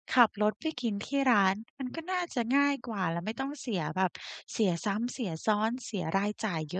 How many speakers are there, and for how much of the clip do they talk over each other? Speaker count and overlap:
1, no overlap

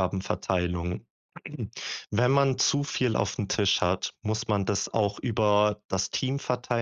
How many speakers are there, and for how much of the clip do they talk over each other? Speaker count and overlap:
1, no overlap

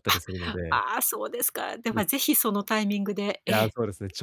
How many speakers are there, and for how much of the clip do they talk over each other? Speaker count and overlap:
2, about 17%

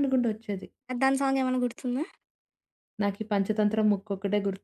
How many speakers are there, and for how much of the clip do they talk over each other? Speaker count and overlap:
2, no overlap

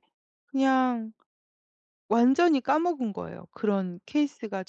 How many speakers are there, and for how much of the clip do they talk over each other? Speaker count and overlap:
1, no overlap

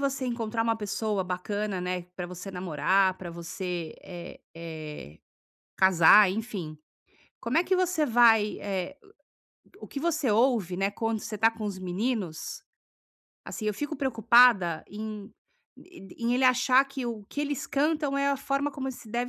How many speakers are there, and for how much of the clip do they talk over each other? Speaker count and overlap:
1, no overlap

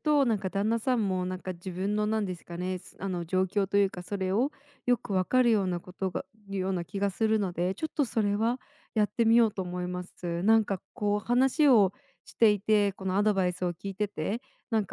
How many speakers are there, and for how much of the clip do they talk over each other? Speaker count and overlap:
1, no overlap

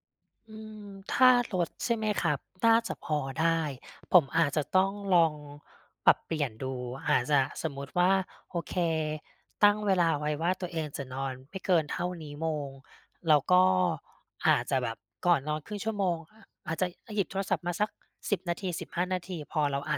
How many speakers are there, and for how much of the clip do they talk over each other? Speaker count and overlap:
1, no overlap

